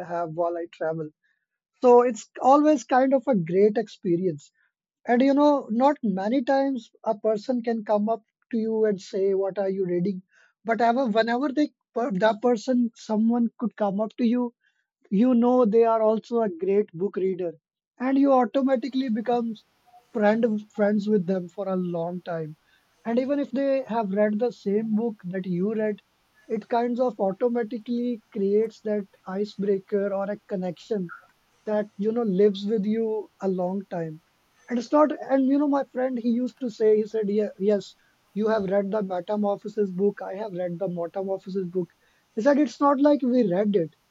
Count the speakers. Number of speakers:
one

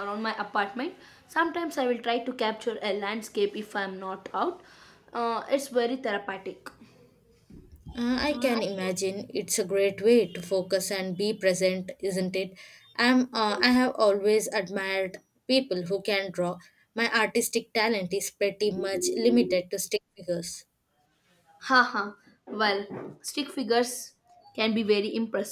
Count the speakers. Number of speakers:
two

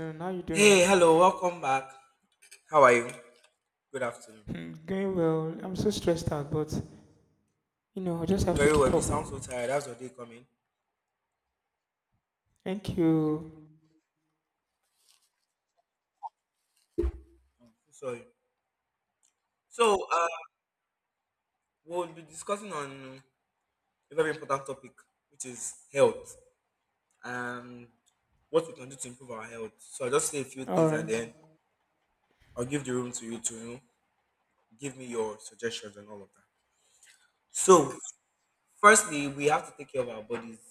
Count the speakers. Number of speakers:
two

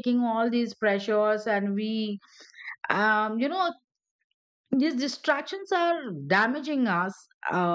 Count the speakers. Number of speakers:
one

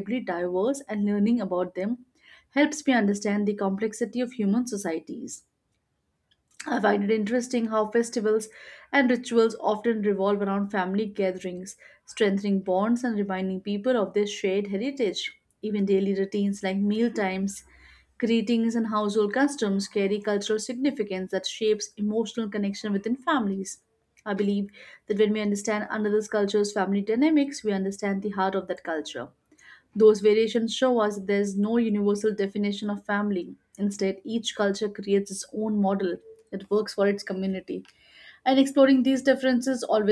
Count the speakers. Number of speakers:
one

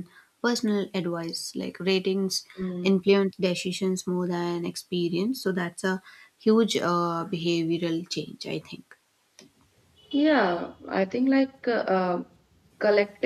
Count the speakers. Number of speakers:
two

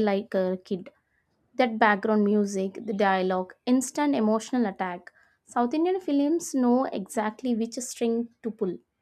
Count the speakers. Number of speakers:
one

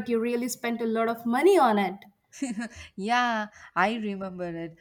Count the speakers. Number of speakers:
two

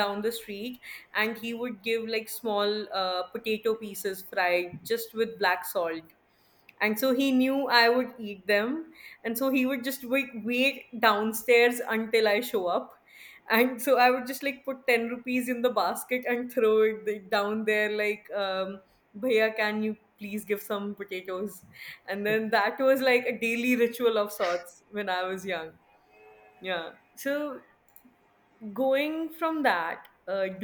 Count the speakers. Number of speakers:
one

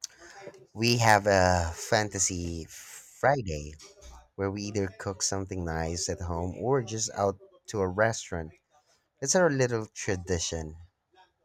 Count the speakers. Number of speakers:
one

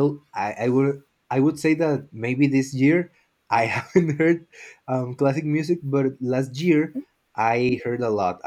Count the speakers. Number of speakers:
one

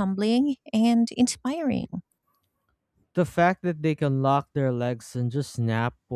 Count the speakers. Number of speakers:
two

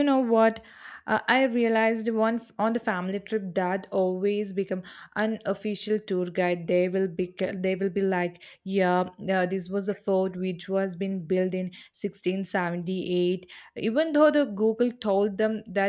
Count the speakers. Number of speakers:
one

